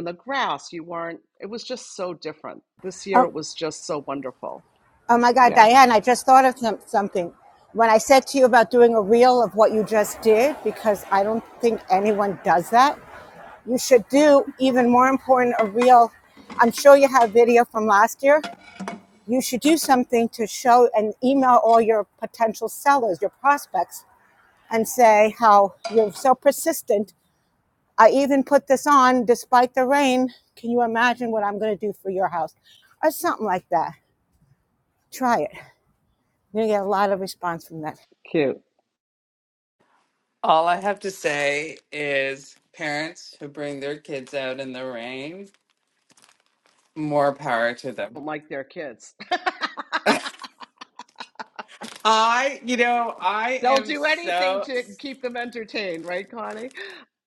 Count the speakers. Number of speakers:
three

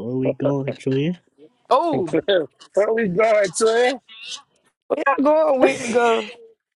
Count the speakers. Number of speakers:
three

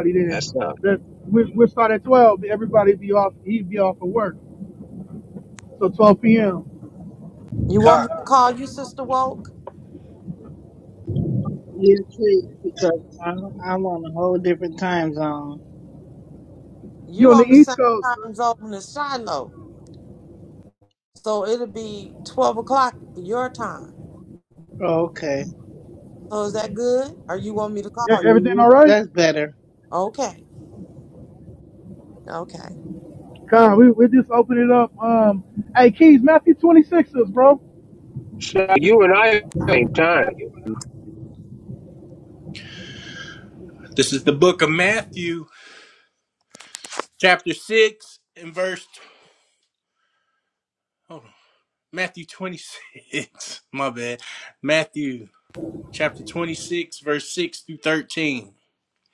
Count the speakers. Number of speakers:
five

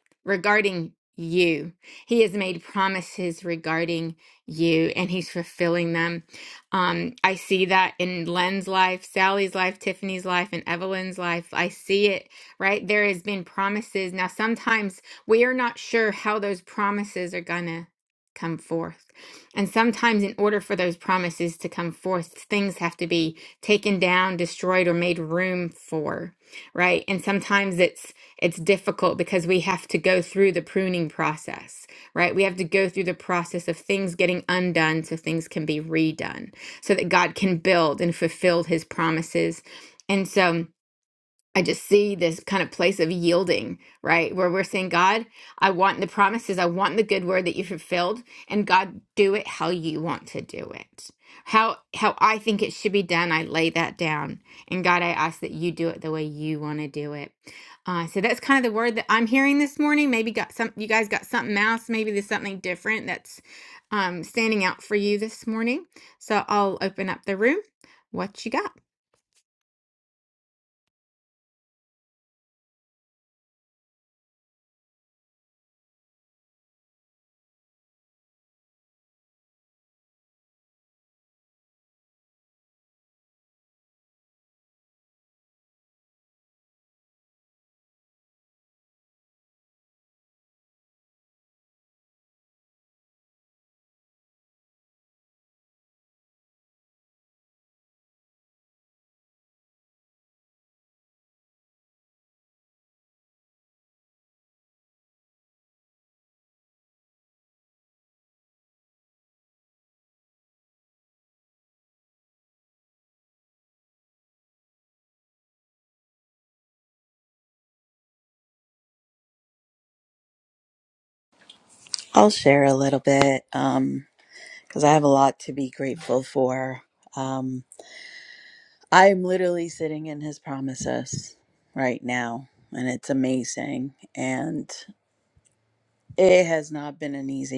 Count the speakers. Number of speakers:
two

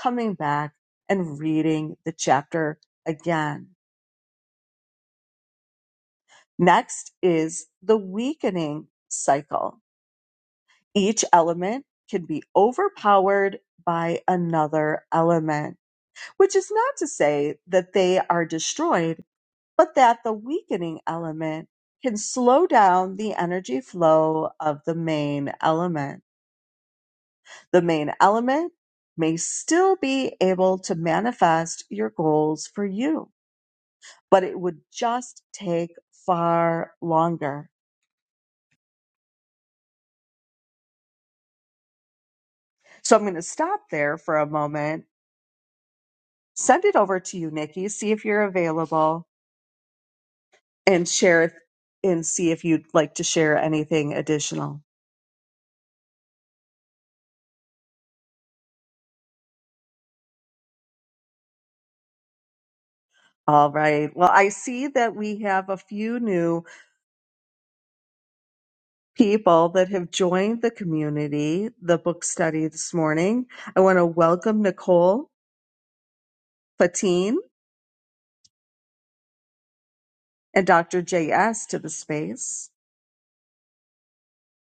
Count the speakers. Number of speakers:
one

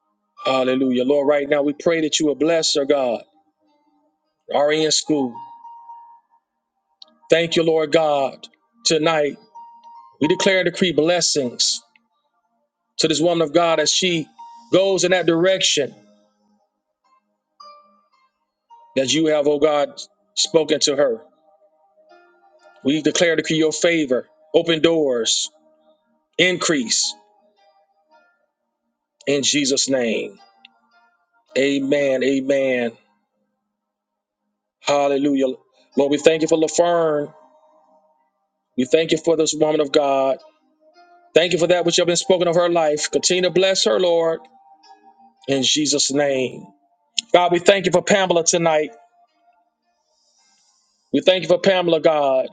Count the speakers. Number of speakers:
one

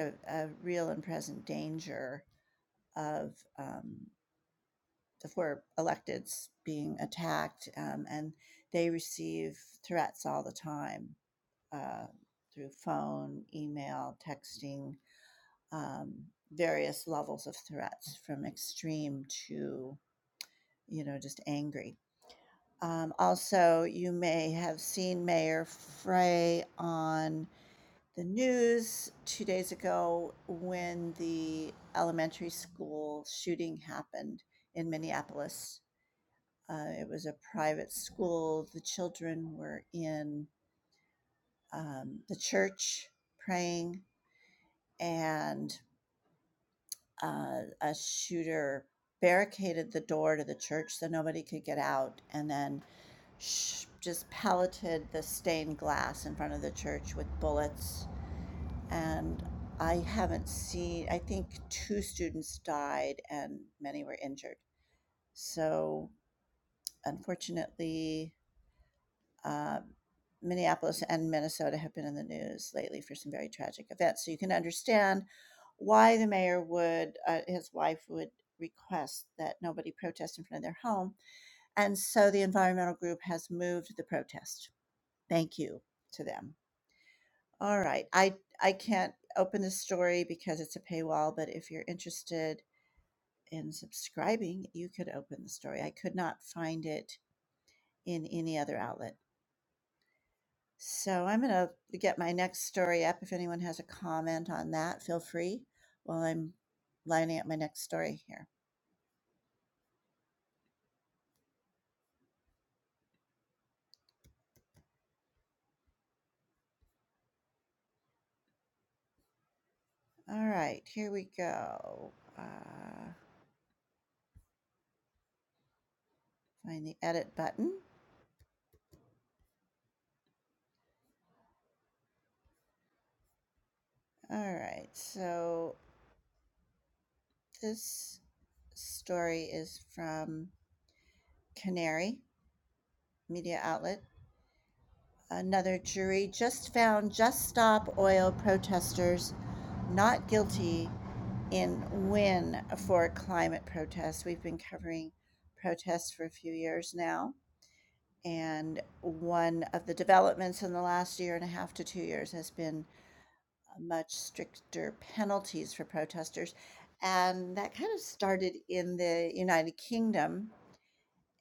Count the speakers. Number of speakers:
one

